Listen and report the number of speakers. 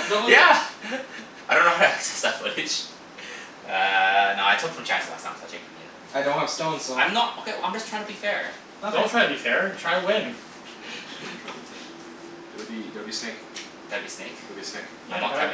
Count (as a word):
four